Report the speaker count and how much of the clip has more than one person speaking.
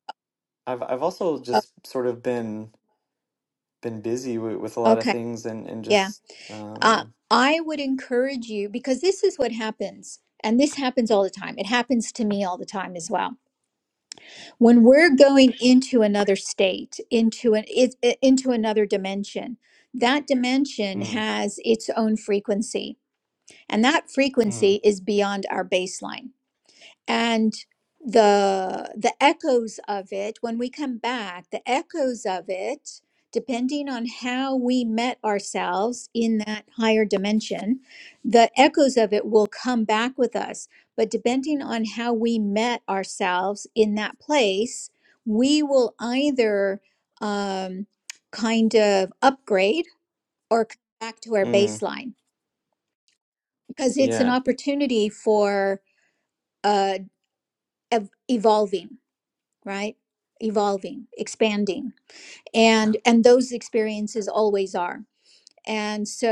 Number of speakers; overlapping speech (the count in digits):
2, about 3%